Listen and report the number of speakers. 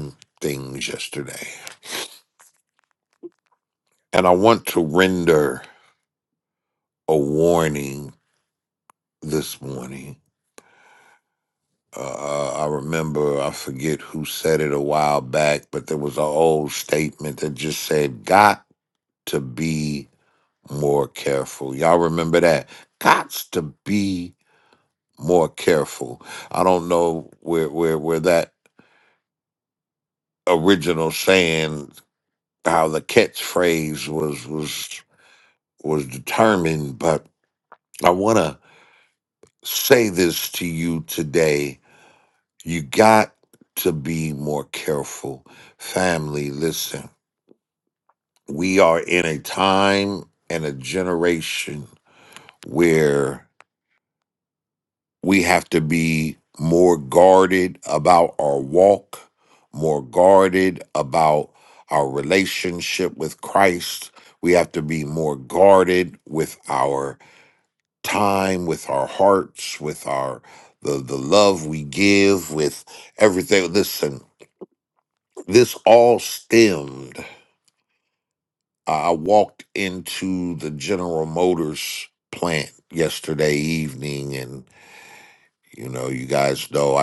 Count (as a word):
one